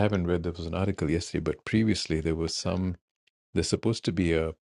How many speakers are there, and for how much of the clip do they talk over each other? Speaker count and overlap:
1, no overlap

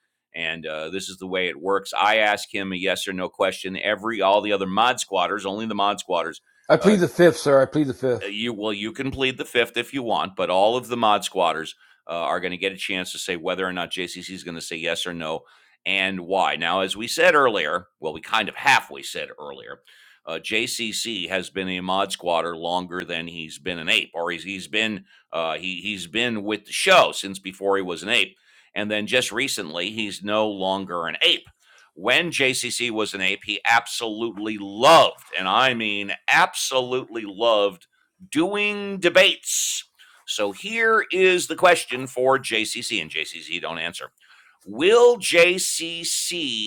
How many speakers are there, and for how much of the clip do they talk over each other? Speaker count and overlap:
2, under 1%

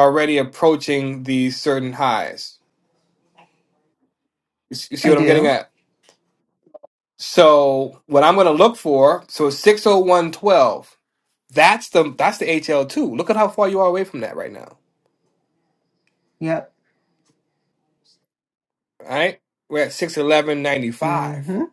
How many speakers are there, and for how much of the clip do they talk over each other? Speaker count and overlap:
2, about 2%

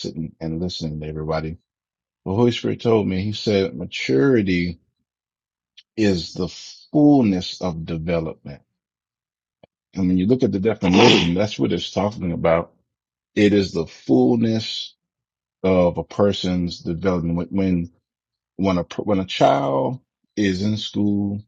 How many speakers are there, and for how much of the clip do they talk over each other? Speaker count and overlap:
1, no overlap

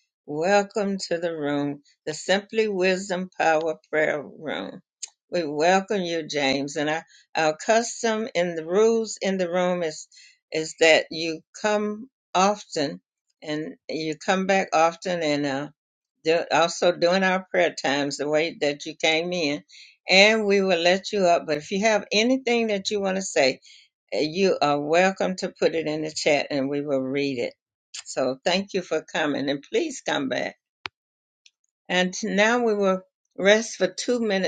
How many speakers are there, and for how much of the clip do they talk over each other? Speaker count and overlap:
1, no overlap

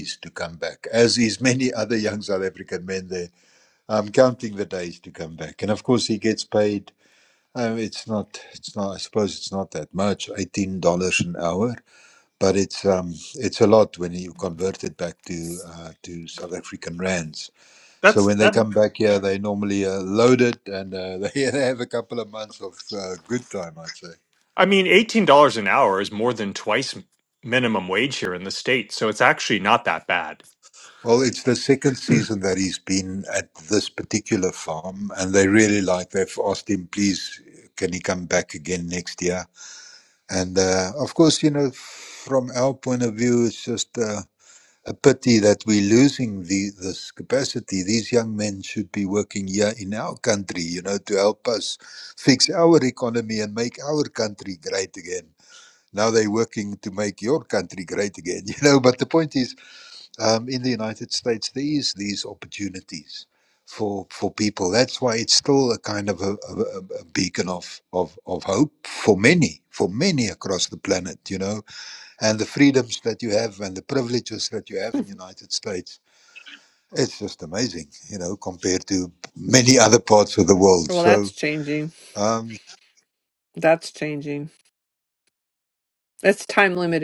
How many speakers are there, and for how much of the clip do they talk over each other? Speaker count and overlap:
3, about 1%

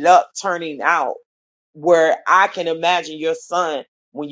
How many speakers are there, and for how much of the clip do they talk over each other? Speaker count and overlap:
1, no overlap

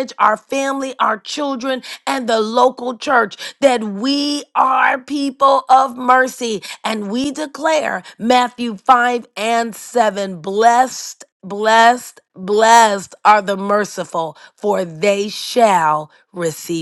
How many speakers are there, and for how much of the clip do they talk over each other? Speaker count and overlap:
1, no overlap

